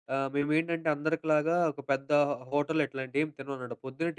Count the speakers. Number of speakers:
1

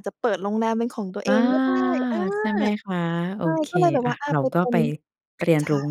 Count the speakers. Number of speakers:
2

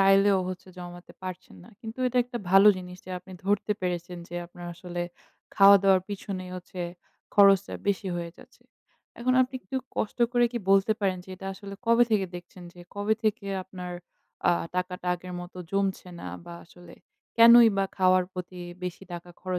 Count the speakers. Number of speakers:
1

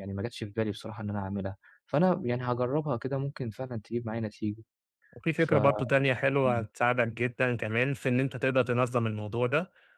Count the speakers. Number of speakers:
2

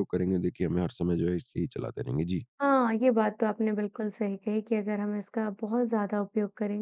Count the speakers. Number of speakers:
2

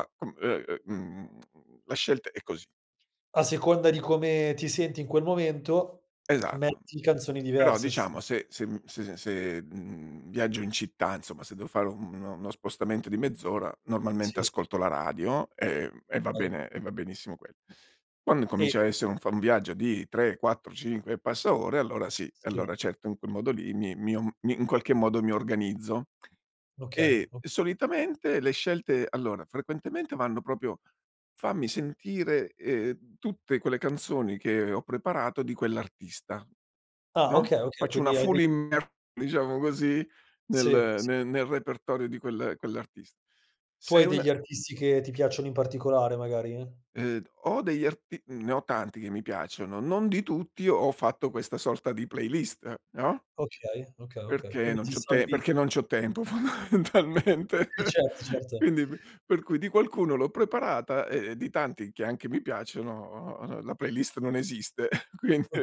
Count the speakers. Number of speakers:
2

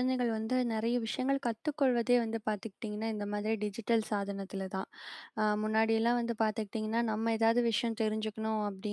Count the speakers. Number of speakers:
1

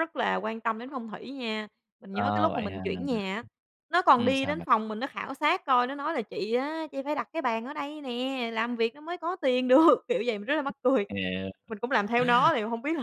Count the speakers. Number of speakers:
2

